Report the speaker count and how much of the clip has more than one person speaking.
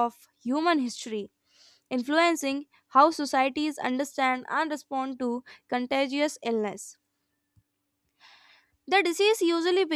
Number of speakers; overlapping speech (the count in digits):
1, no overlap